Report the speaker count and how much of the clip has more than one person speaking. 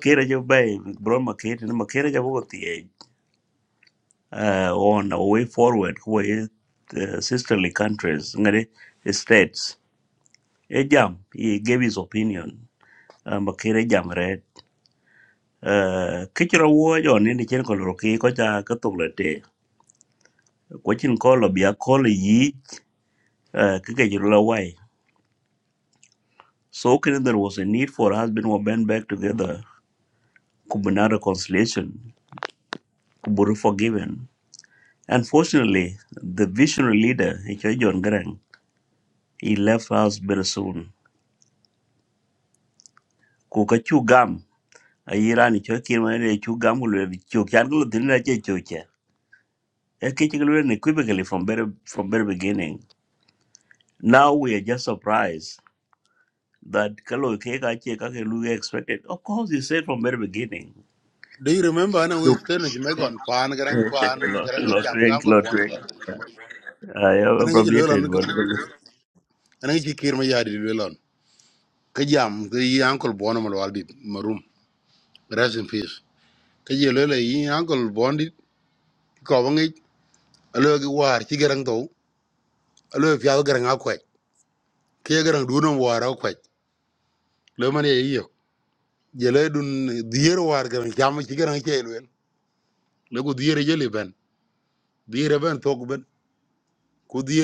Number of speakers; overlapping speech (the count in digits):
2, about 3%